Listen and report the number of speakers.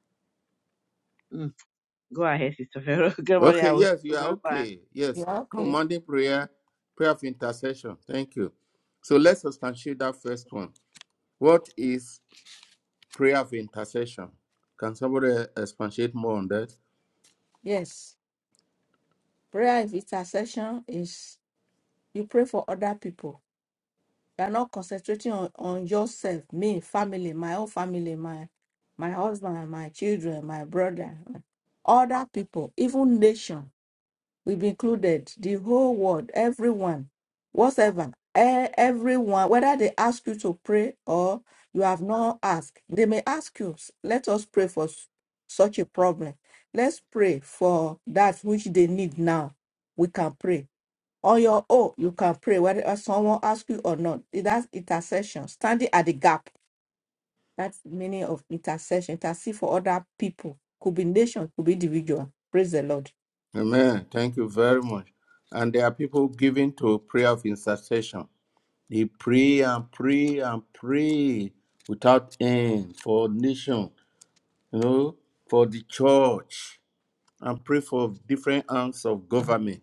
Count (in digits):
3